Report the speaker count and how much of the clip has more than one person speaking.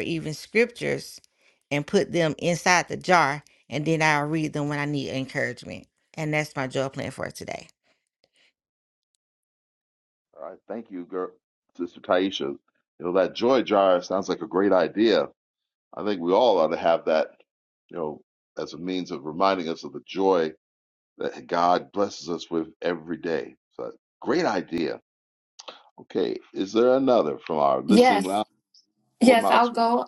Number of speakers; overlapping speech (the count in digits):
3, about 3%